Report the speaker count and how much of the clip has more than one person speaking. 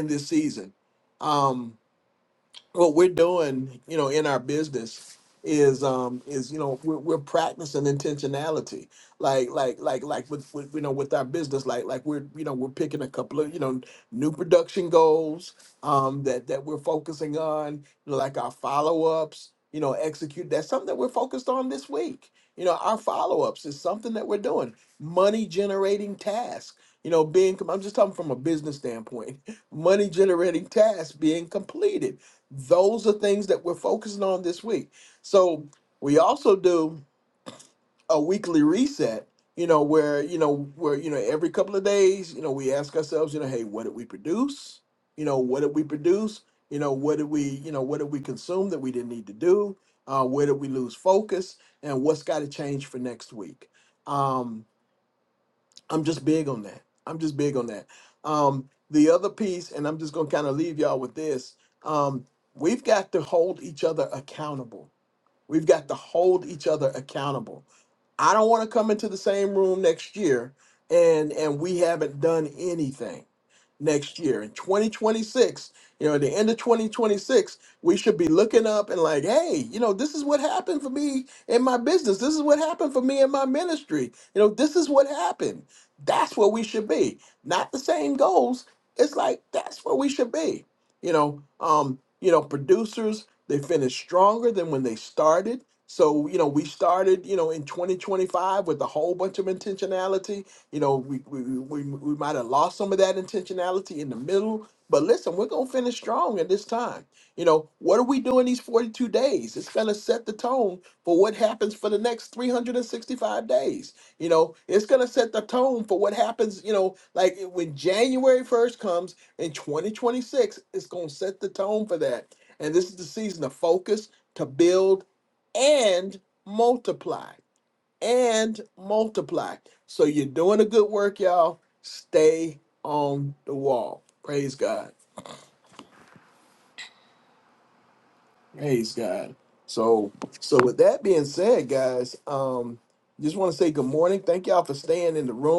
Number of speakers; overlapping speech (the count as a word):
one, no overlap